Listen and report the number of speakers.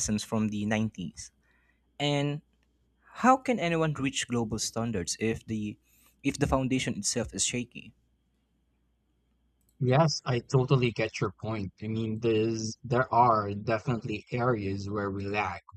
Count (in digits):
2